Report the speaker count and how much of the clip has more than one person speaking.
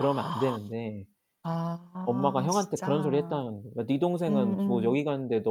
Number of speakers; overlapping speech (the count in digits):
2, about 37%